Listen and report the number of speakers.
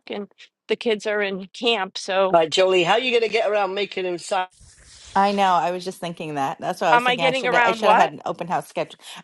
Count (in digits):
3